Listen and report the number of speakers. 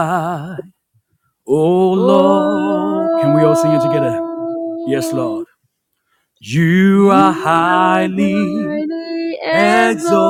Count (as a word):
two